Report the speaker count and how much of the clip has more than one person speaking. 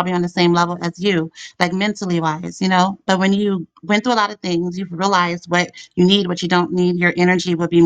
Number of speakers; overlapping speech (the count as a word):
one, no overlap